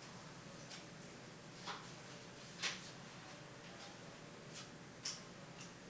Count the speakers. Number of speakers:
0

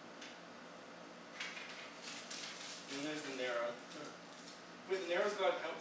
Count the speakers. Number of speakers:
1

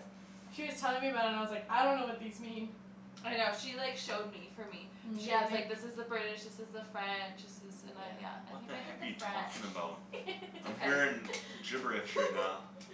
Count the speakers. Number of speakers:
3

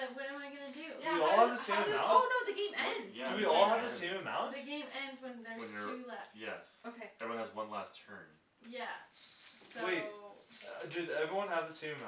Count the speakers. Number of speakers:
4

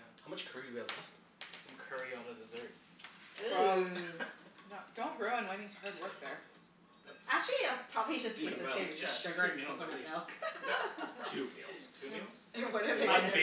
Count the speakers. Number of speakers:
4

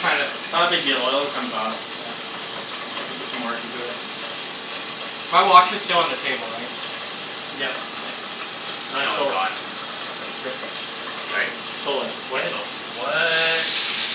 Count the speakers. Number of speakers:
3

